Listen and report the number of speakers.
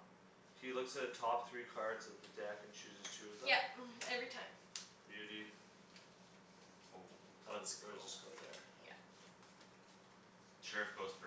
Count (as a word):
three